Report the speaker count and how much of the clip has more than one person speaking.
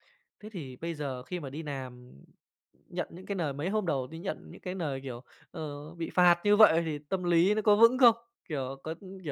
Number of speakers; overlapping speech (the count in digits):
1, no overlap